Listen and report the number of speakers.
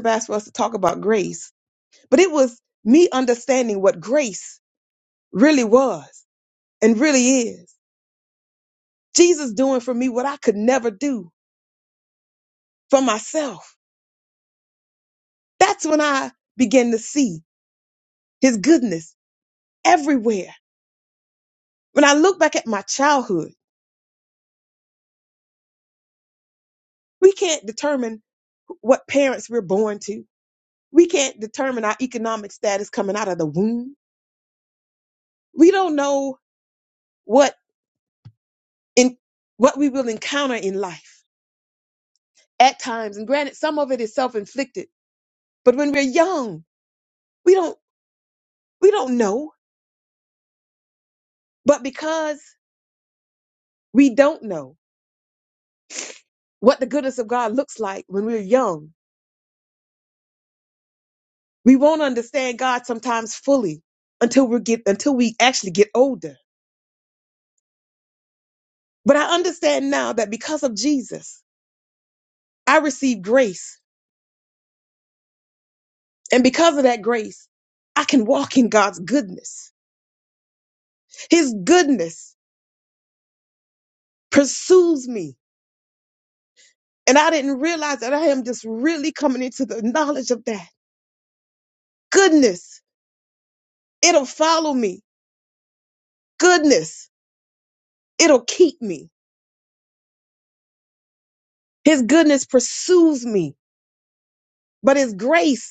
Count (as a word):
one